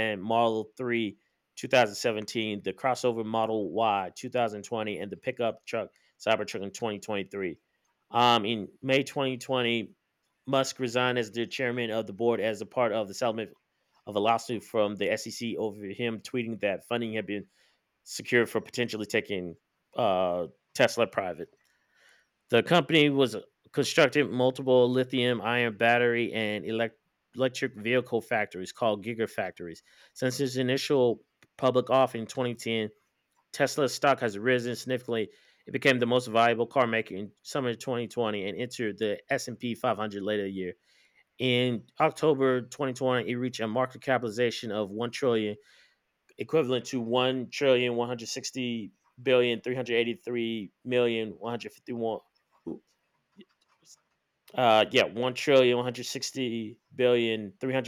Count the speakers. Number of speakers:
one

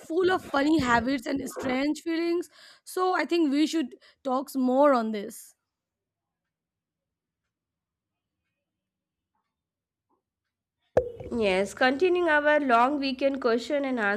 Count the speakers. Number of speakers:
two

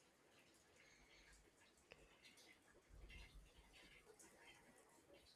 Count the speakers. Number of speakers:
zero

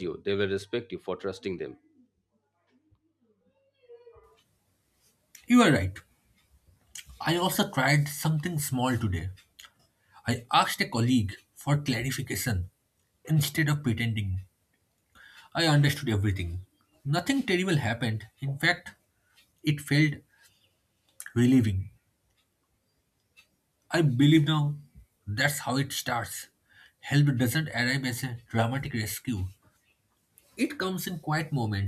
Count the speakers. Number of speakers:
two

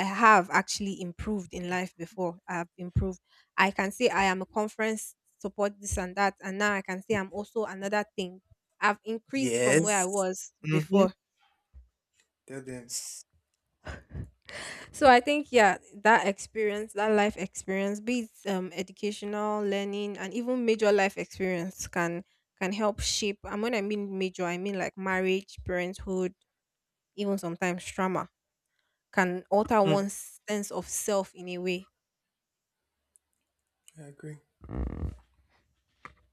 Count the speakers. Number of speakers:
two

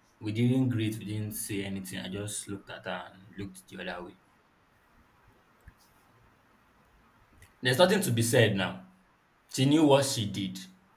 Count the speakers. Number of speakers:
one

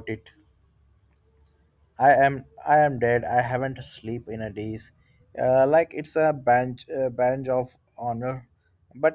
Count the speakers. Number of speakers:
one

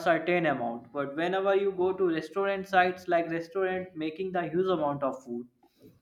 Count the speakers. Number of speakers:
one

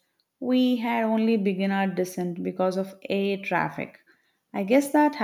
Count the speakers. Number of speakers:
one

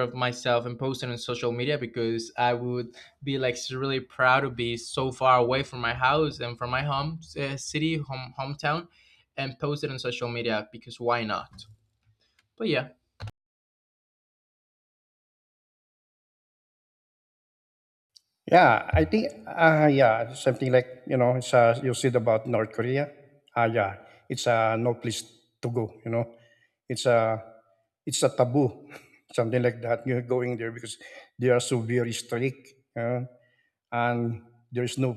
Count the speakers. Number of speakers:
two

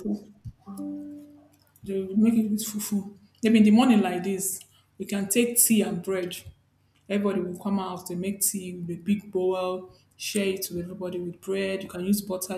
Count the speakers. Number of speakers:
one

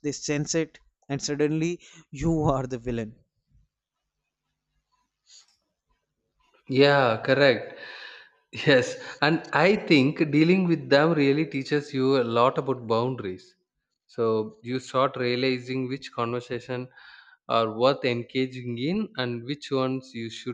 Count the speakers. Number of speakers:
two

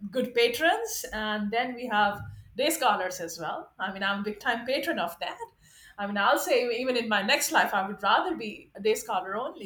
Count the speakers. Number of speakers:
one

